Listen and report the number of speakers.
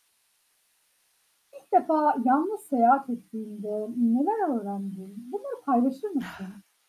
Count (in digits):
1